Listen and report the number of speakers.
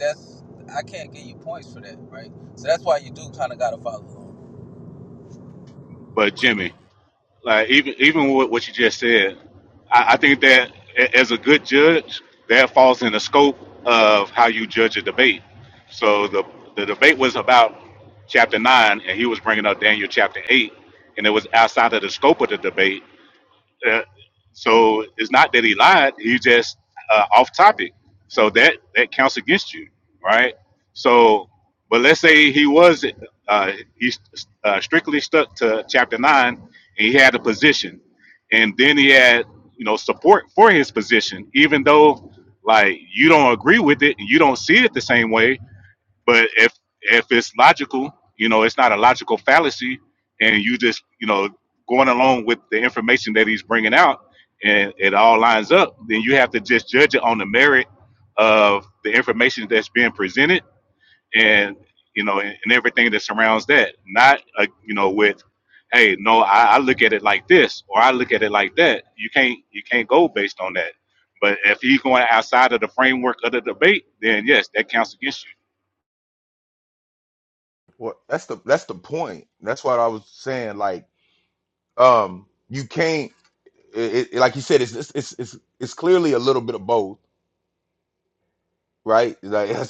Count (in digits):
3